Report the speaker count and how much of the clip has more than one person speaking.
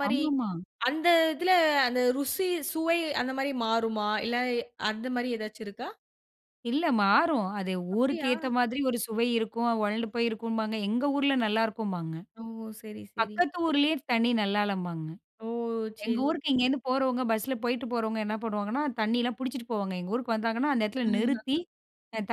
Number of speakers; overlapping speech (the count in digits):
2, about 7%